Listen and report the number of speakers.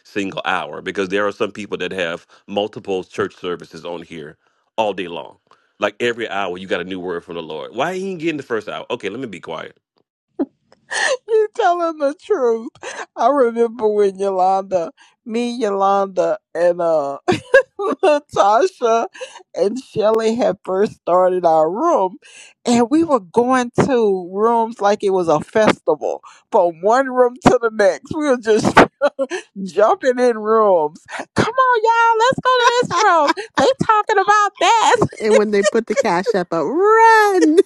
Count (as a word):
three